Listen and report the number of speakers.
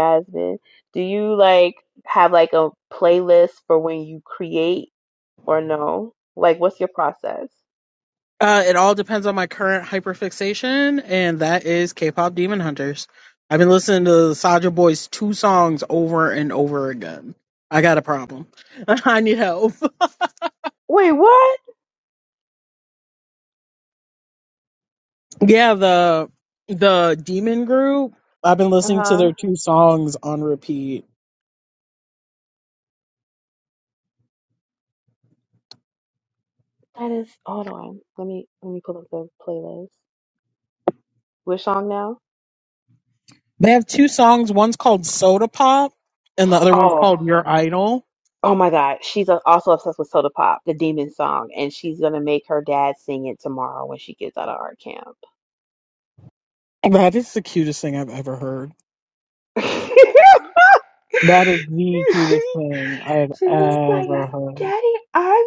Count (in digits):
2